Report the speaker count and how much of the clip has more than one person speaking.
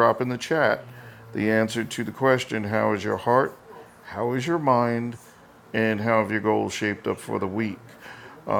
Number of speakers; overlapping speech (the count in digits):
1, no overlap